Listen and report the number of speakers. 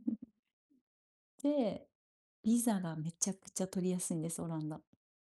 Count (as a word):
one